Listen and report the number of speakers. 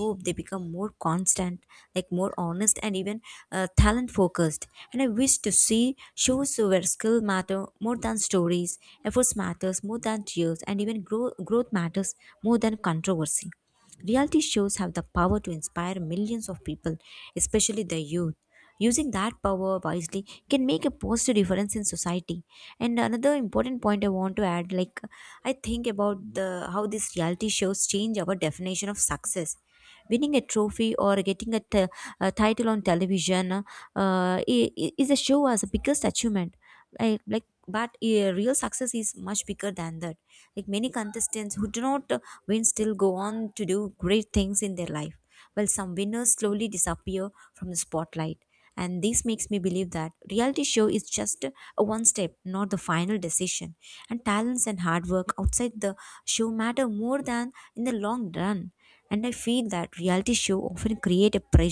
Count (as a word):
one